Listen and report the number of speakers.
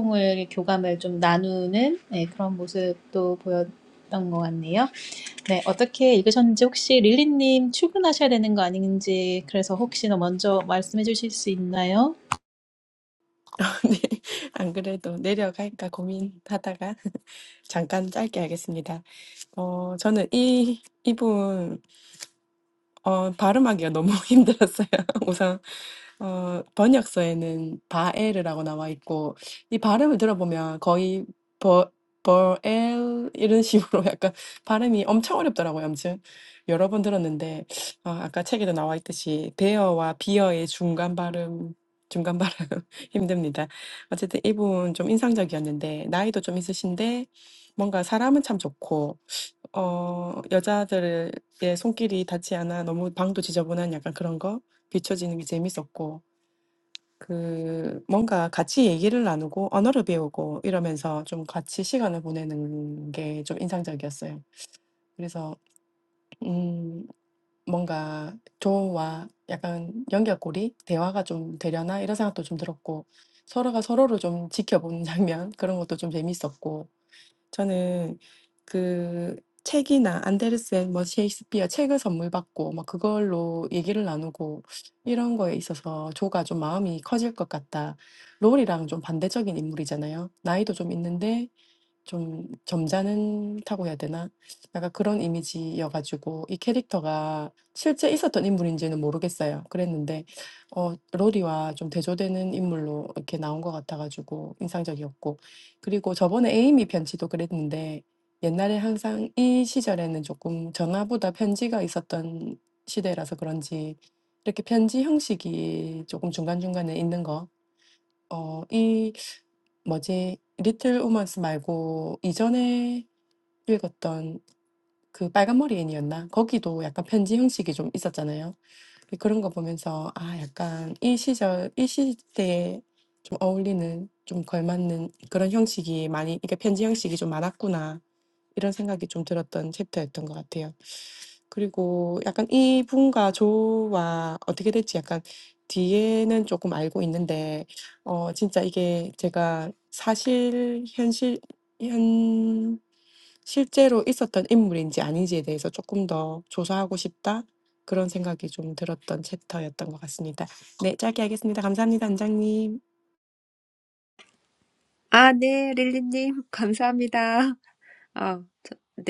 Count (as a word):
three